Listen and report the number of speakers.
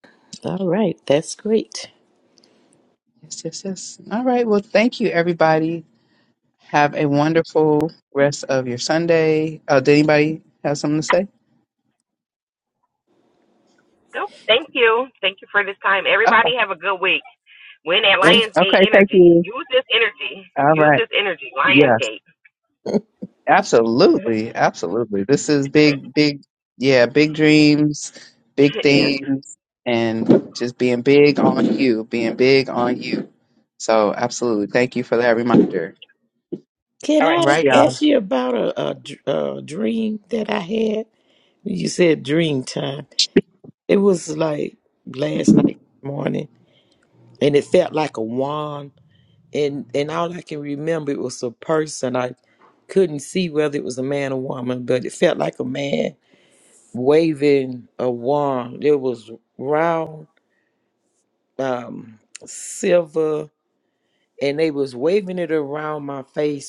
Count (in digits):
3